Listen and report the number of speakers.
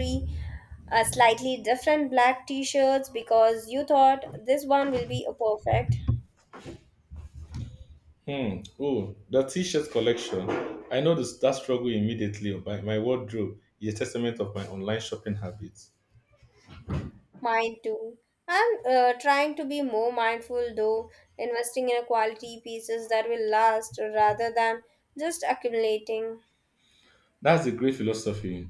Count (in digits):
2